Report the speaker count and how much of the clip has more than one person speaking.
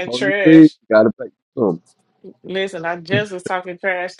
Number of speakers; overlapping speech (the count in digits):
2, about 17%